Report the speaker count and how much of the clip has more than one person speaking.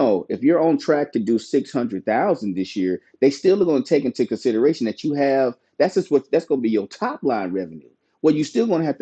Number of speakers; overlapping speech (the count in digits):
1, no overlap